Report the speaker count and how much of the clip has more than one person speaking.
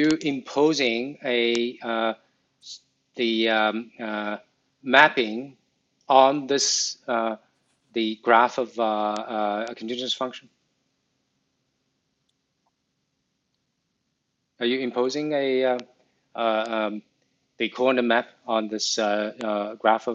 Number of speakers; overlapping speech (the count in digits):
1, no overlap